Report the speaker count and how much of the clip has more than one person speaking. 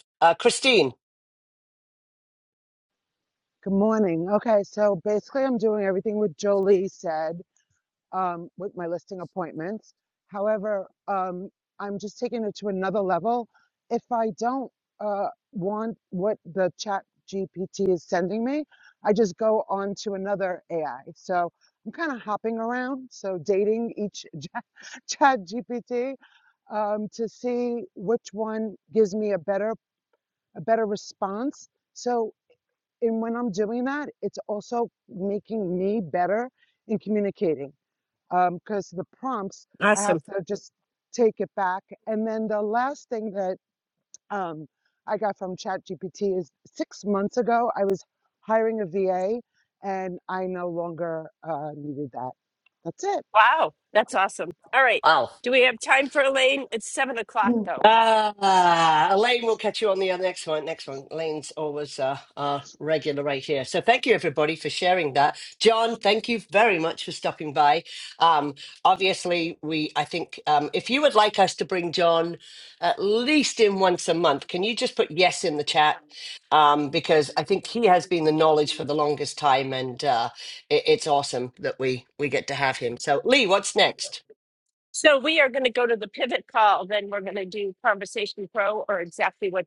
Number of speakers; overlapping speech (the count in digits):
3, under 1%